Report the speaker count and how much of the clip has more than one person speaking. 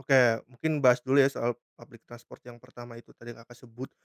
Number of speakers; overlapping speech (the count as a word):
one, no overlap